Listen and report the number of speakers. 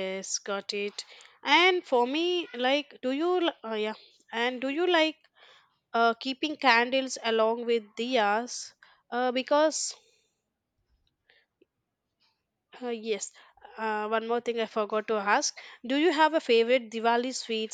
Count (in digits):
1